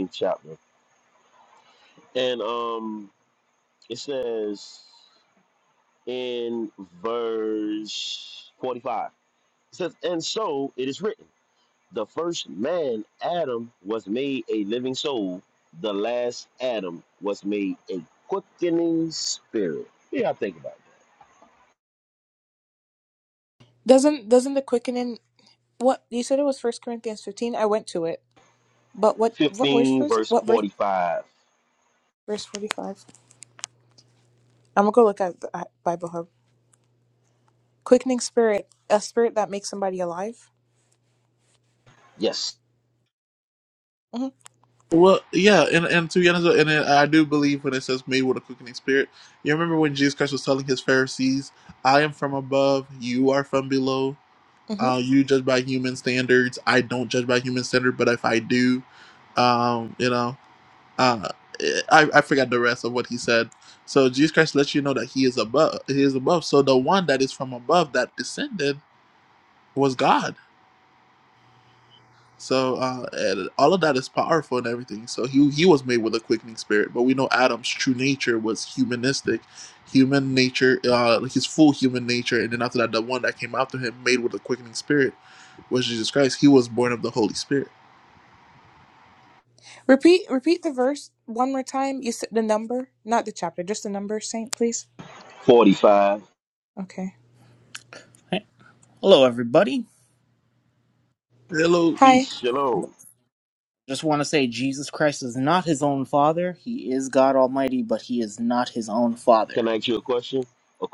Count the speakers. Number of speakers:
four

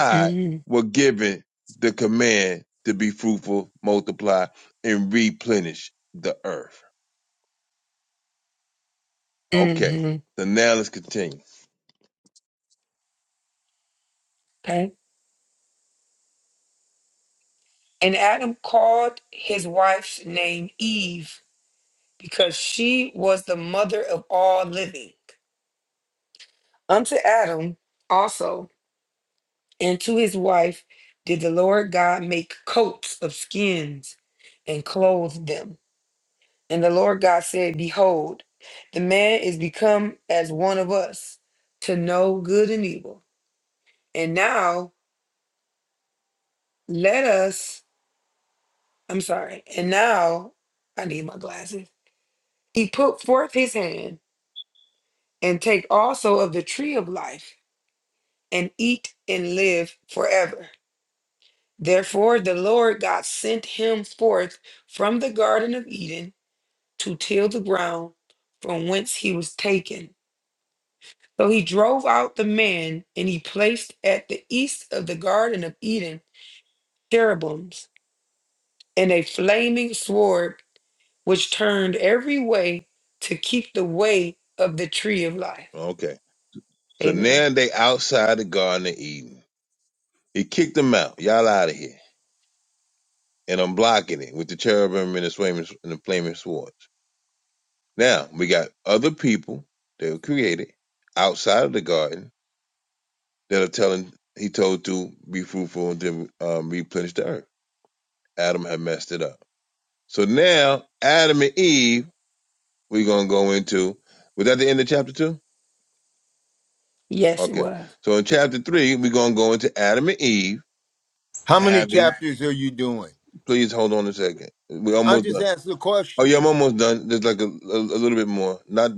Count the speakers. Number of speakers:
three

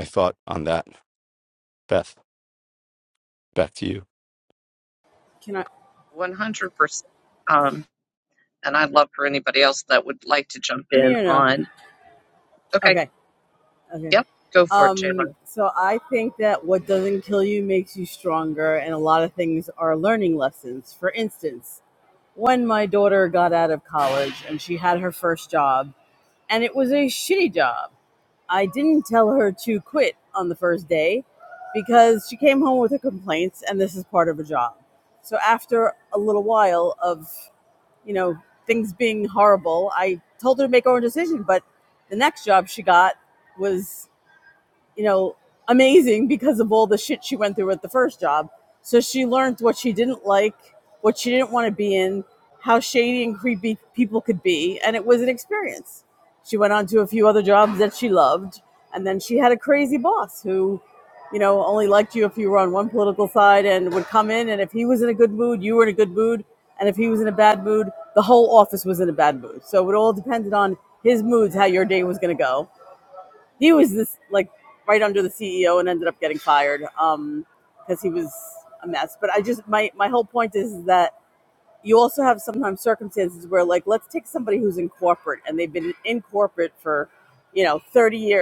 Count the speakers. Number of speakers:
three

